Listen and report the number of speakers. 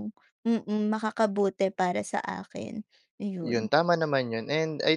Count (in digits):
2